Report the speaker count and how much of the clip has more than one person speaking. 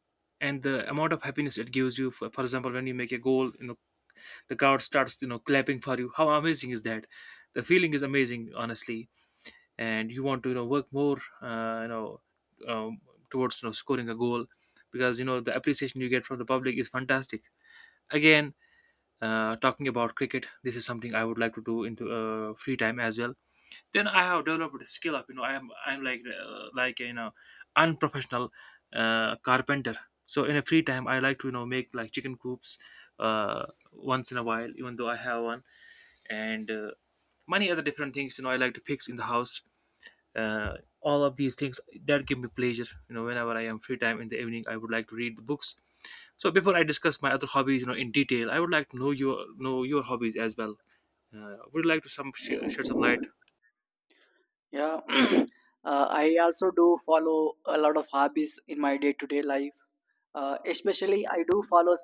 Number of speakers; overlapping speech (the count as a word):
two, no overlap